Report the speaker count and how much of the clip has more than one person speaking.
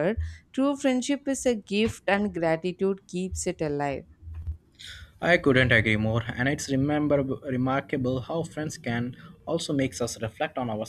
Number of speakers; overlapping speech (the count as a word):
two, no overlap